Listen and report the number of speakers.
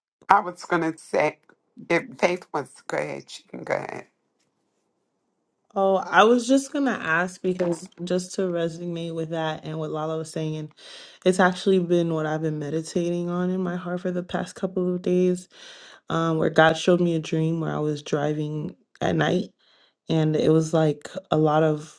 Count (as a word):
two